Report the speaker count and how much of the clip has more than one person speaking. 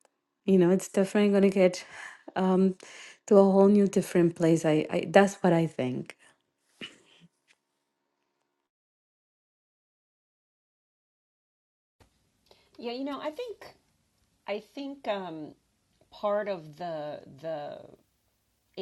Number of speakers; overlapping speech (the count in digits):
2, no overlap